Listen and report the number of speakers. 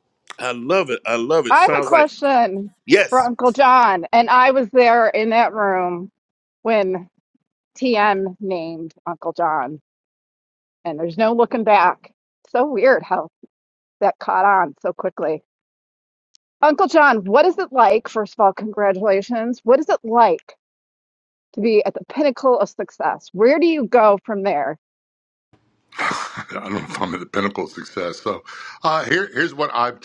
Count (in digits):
3